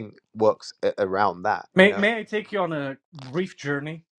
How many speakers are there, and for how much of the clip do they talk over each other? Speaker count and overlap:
2, about 7%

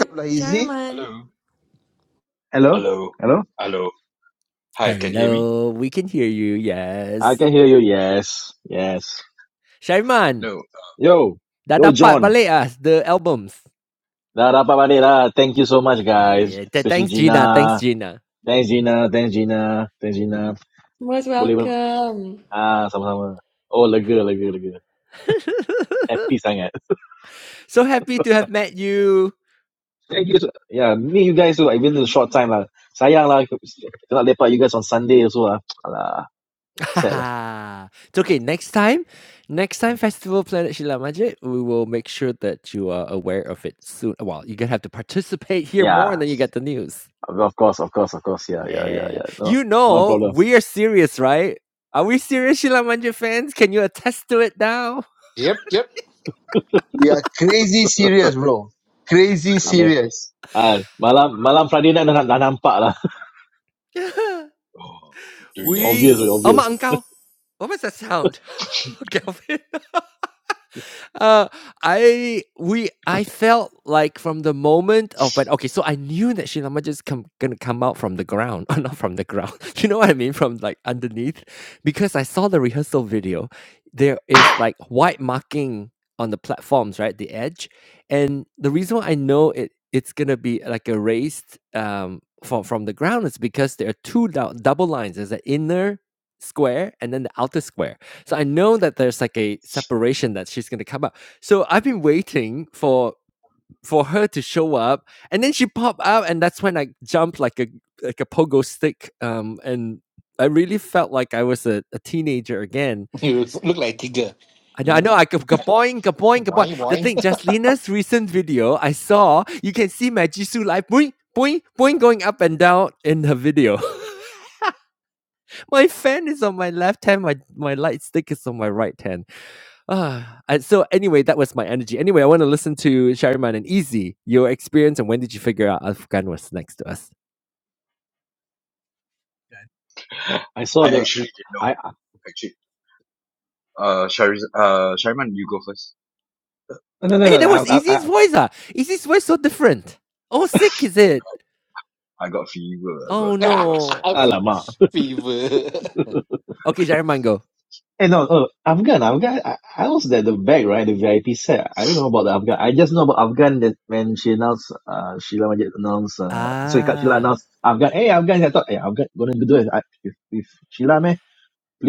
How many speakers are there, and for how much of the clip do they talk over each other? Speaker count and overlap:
6, about 7%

